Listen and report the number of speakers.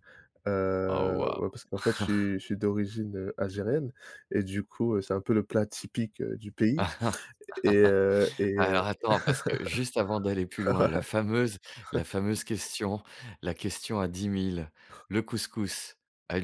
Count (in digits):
2